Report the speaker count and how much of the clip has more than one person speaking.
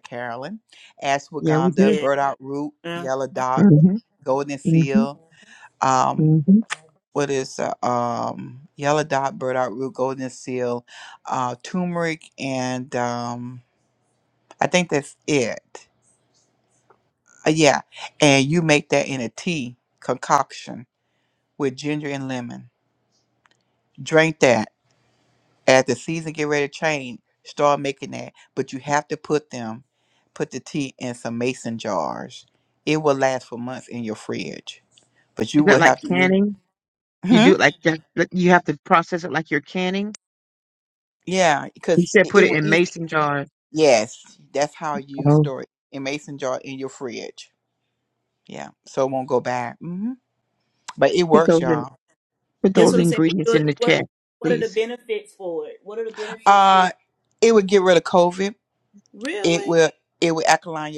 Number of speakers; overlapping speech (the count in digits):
3, about 11%